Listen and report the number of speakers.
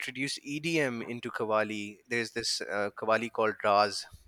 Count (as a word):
one